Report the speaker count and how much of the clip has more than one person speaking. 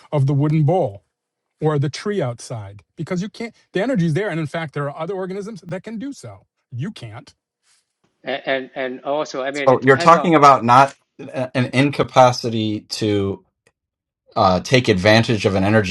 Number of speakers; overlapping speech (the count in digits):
3, about 4%